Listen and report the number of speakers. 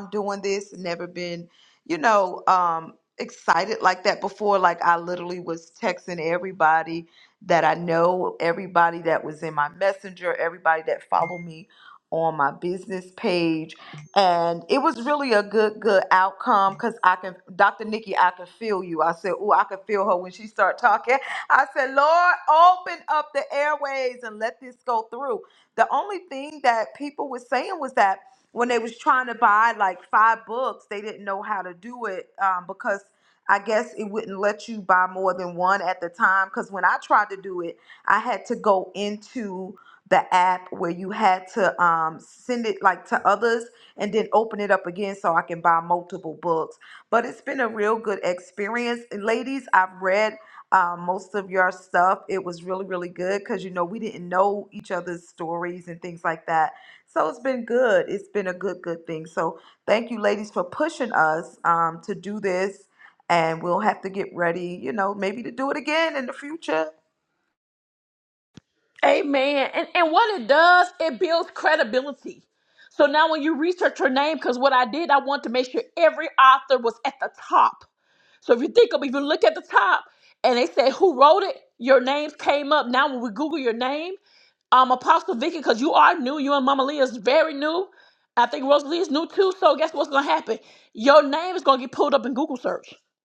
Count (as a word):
two